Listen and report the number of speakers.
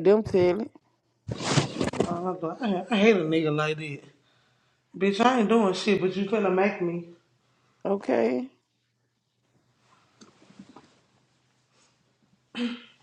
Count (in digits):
2